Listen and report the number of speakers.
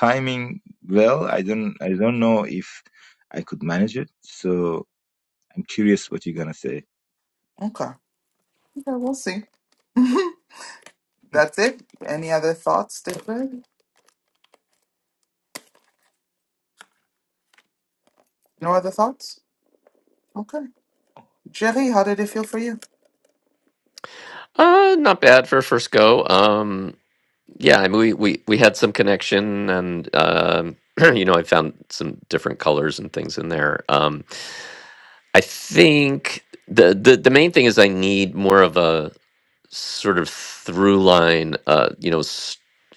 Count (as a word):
three